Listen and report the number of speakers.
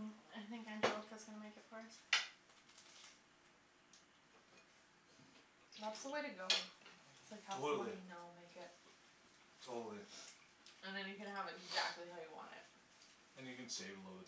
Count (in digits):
3